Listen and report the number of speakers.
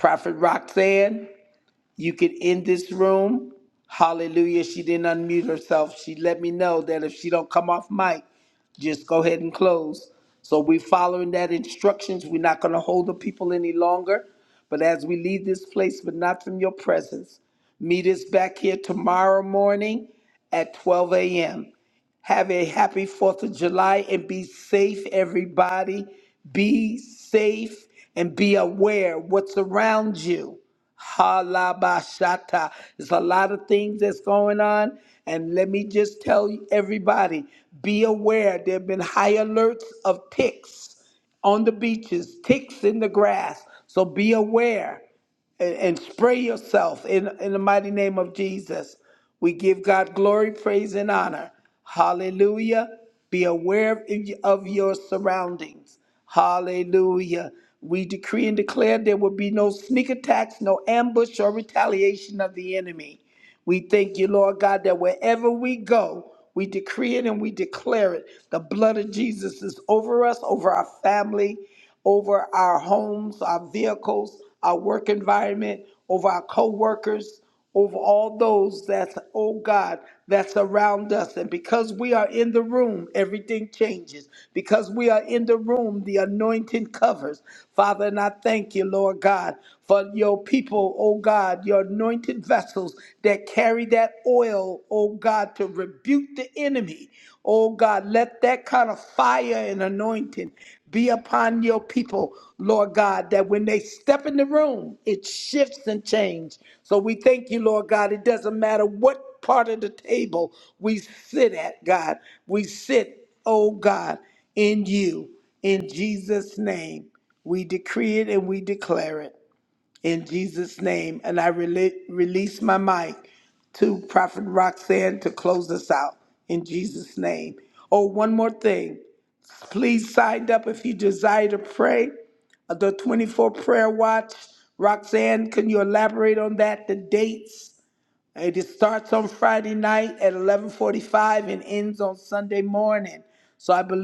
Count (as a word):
one